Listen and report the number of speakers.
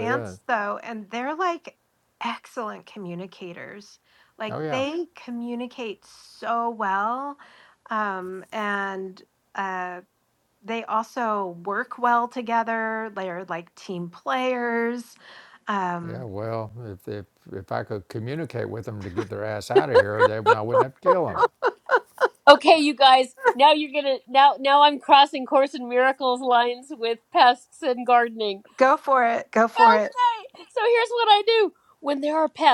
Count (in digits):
3